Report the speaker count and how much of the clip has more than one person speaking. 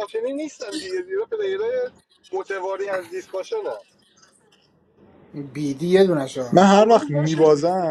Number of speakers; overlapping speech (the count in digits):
3, about 8%